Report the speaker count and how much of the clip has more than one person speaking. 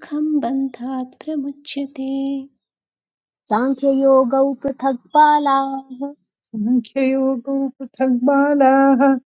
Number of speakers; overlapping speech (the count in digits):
3, no overlap